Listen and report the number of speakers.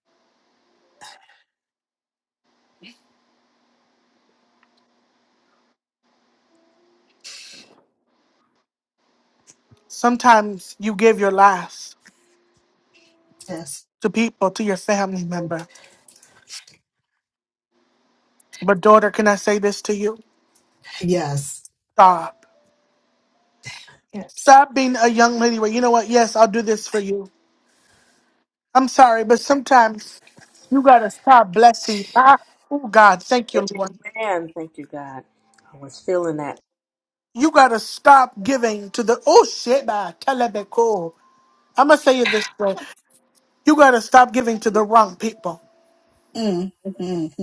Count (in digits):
3